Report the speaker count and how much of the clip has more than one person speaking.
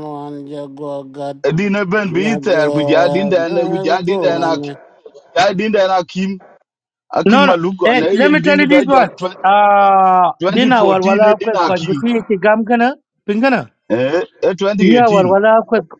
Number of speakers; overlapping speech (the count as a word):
three, about 38%